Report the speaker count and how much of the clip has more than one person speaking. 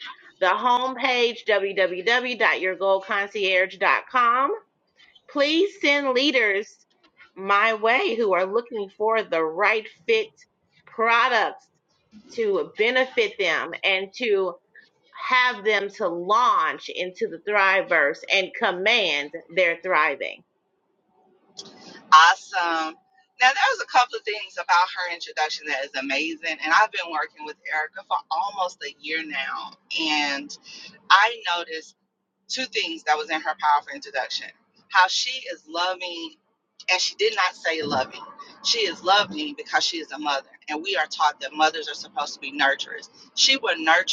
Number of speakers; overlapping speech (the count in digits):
2, no overlap